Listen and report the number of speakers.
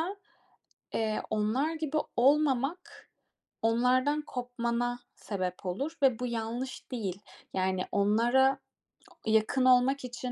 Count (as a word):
one